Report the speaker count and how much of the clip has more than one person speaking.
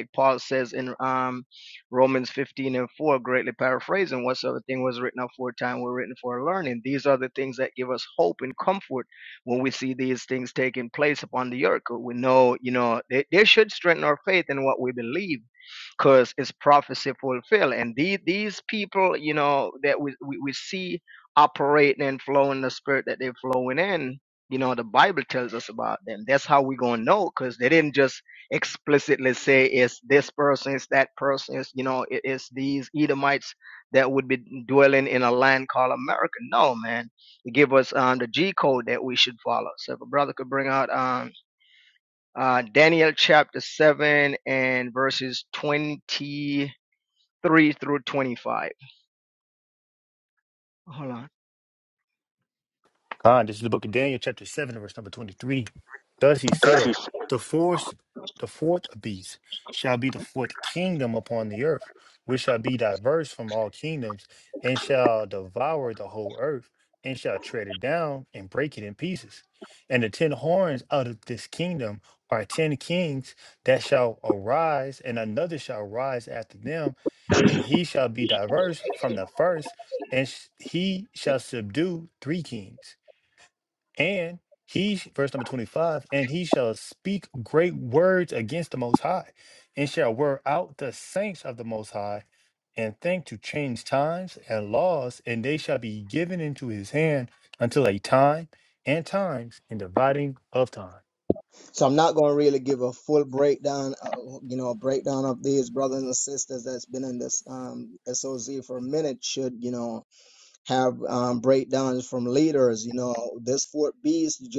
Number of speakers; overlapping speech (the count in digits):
2, no overlap